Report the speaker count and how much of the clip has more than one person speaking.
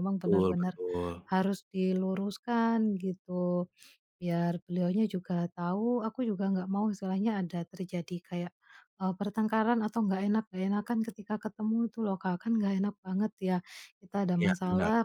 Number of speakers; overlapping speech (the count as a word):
two, about 7%